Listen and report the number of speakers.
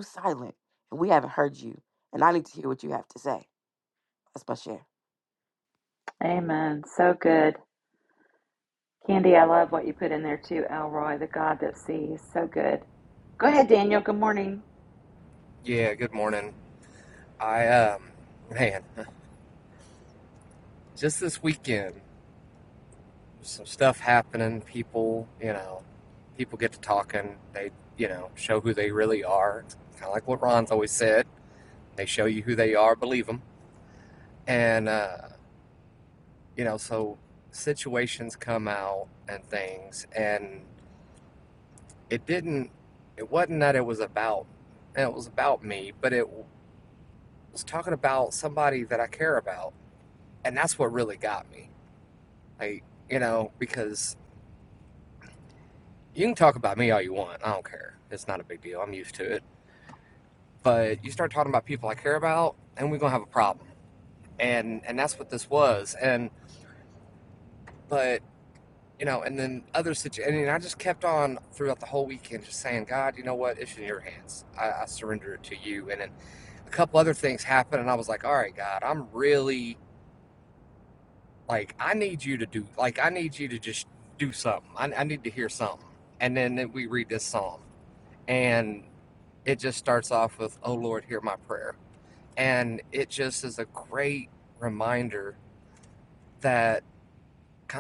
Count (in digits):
3